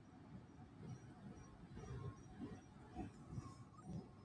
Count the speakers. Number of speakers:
0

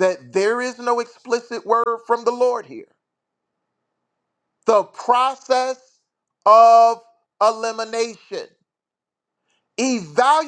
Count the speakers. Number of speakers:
1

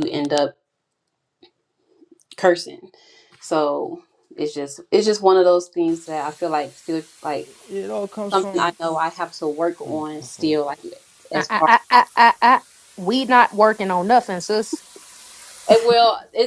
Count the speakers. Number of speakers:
3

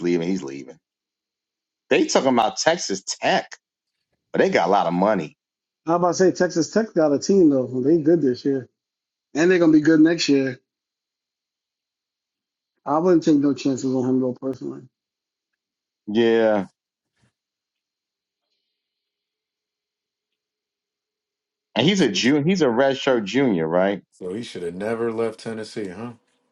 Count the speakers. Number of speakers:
3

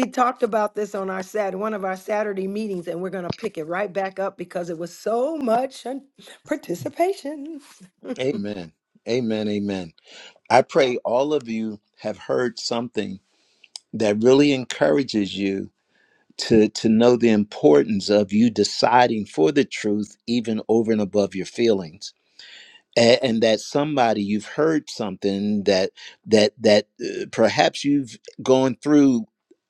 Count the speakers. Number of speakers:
2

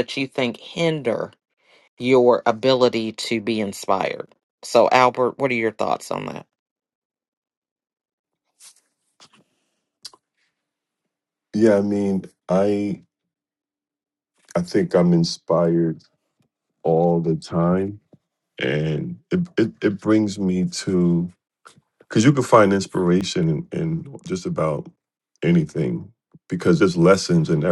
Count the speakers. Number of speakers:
2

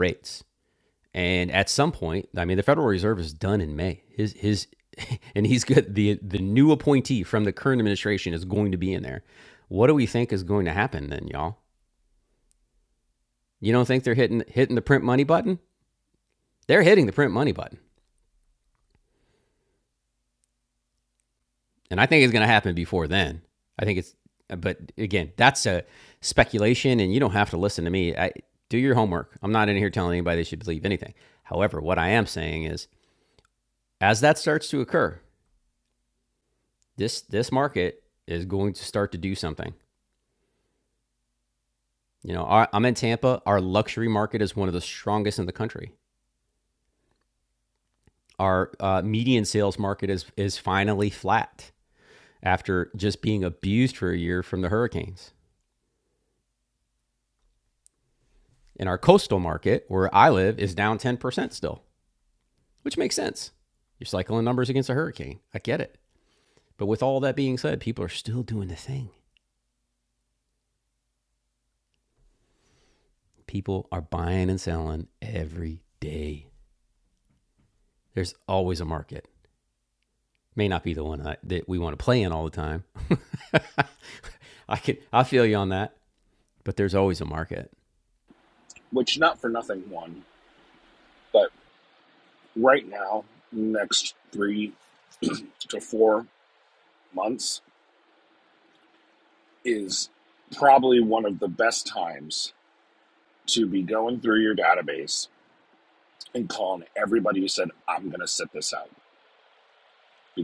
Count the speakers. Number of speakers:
2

